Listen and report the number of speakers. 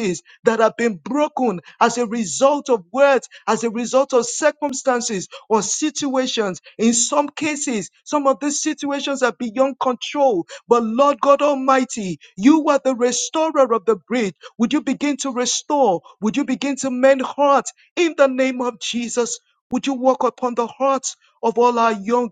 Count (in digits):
1